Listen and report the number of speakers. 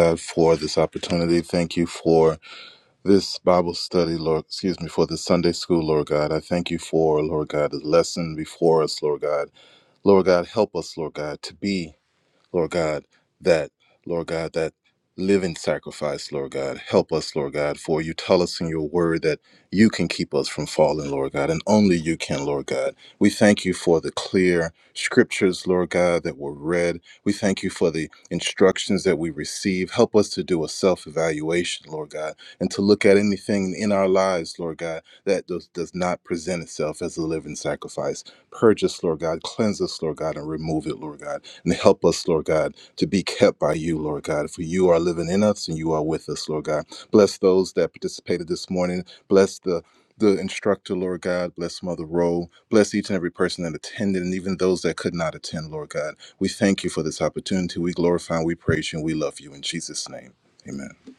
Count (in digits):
1